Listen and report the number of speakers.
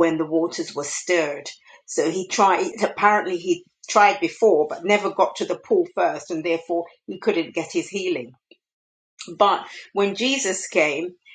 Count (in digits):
1